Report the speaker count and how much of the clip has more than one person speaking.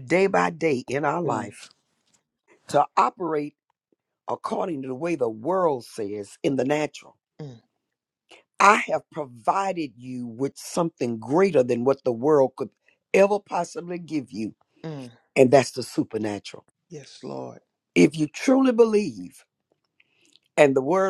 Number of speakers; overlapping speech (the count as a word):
two, about 1%